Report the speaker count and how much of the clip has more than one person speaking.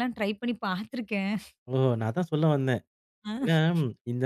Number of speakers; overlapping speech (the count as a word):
two, about 3%